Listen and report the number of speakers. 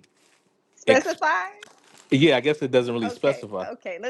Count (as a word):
two